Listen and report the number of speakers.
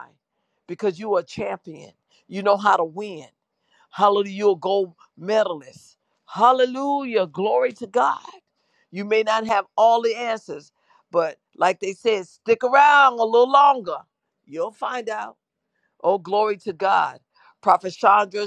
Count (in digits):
1